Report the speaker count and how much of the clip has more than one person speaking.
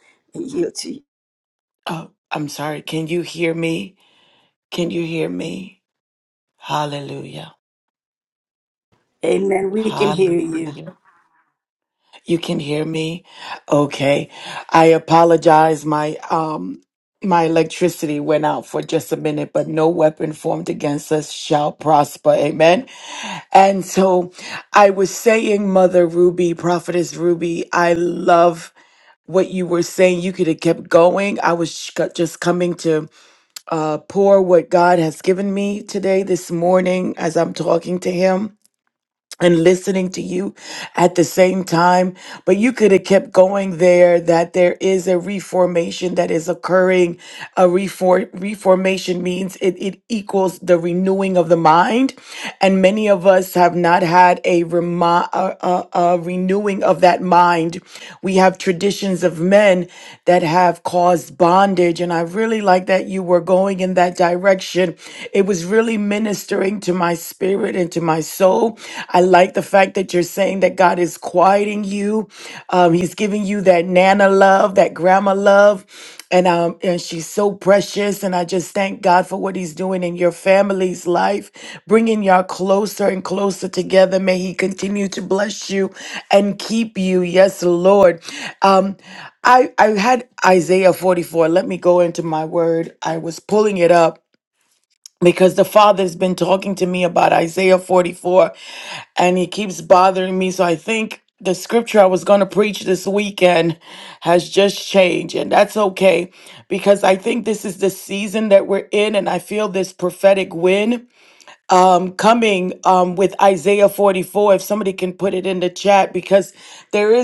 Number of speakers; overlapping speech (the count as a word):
two, about 1%